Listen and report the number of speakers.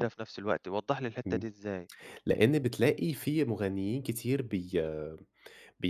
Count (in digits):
2